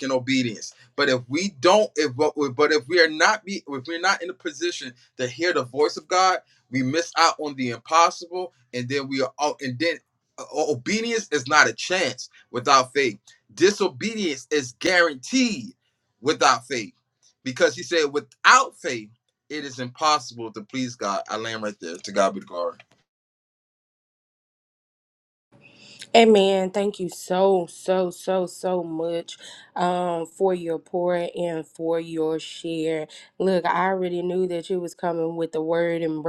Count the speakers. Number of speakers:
two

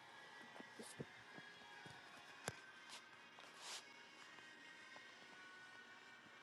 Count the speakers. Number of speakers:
zero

